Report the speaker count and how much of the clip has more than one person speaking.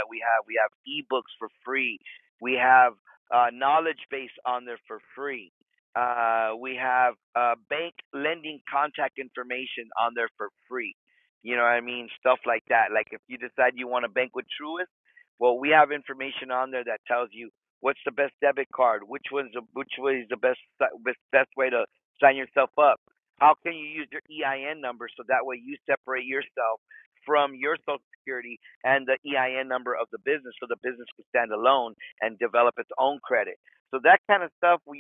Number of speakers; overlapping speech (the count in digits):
1, no overlap